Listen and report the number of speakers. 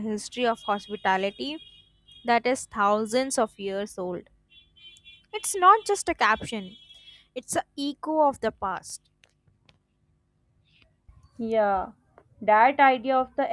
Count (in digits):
2